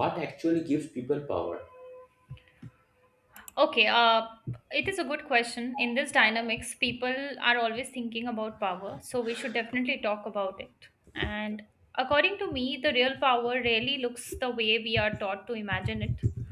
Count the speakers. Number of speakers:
2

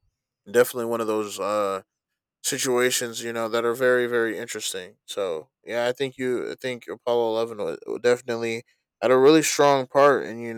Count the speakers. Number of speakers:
1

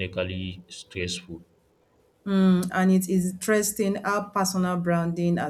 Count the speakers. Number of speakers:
2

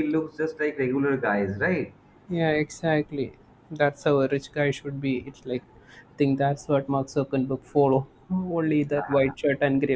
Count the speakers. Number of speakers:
2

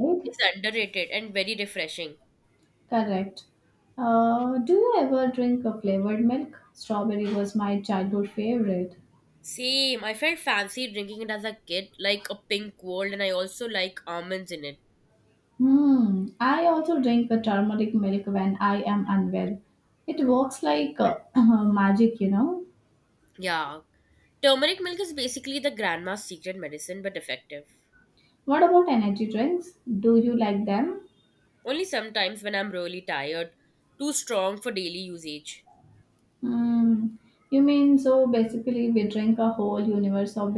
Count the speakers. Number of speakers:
2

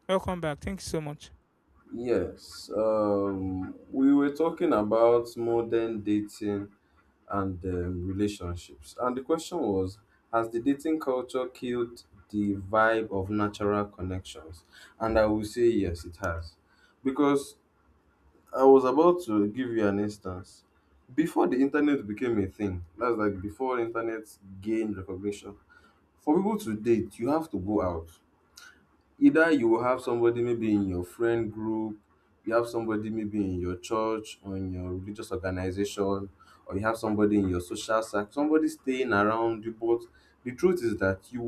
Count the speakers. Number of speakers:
2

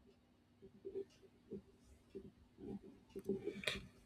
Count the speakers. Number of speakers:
0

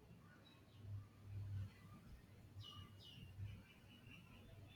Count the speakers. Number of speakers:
0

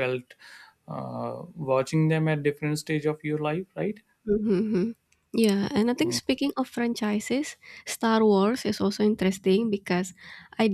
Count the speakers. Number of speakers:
2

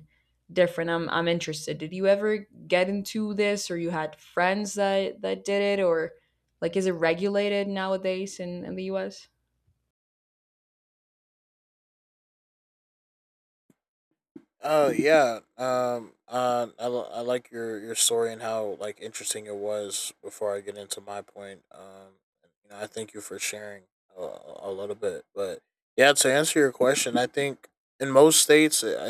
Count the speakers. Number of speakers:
2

